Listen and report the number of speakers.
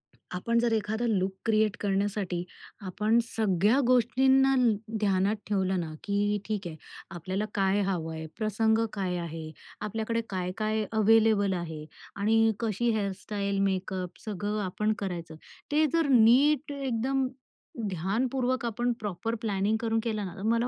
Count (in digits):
1